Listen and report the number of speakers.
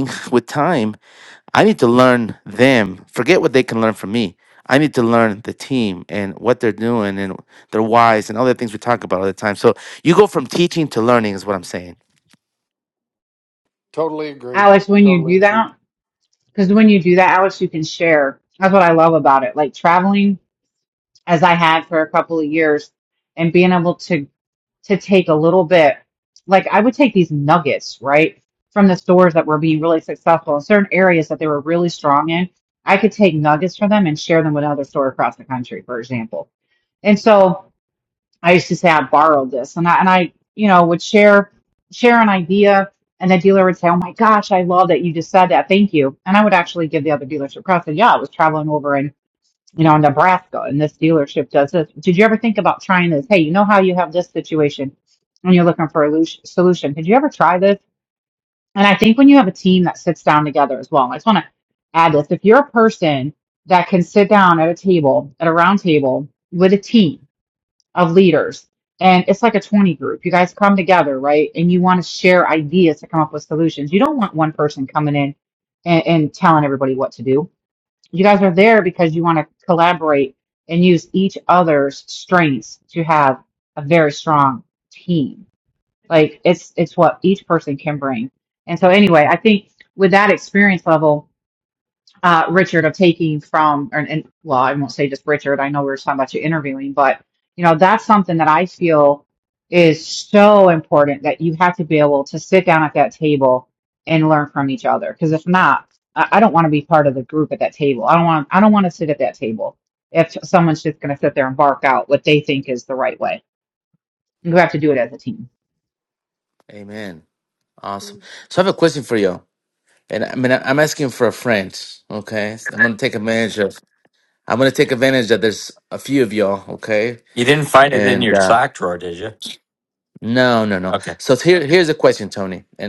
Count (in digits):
4